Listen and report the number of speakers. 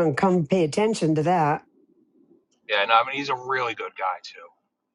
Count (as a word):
two